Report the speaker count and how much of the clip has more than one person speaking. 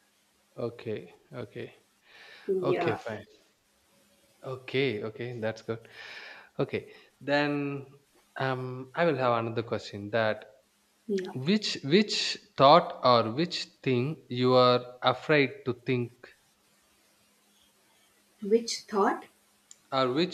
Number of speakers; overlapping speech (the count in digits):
2, about 2%